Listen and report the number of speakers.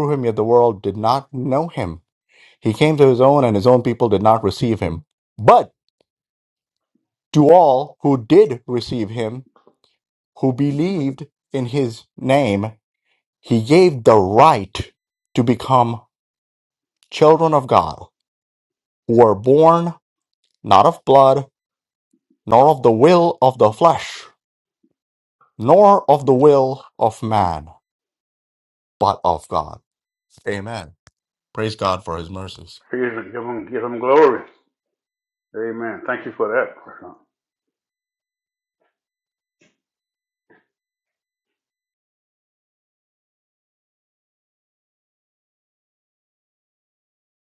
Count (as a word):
two